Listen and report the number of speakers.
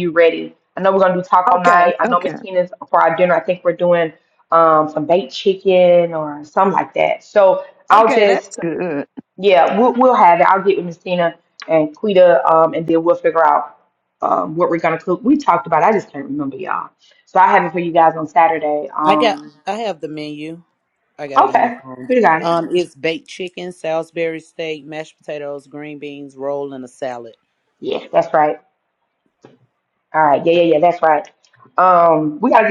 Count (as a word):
three